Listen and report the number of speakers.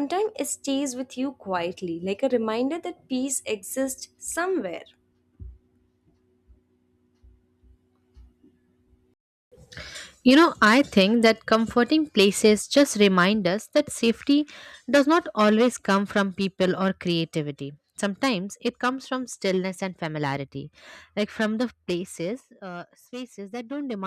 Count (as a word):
two